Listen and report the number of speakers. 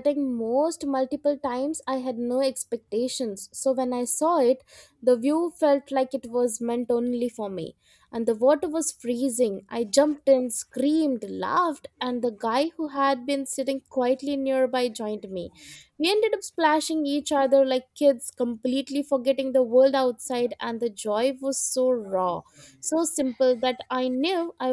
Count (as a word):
one